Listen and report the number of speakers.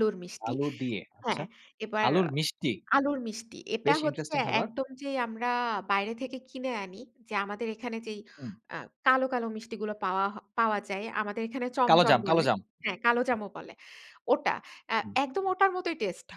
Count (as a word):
two